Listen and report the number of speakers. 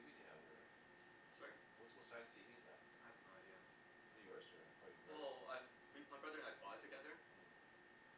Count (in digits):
2